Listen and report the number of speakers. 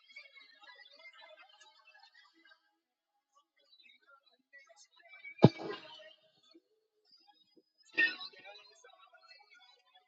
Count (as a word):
zero